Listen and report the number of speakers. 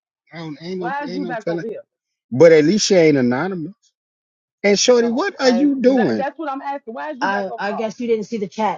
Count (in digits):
3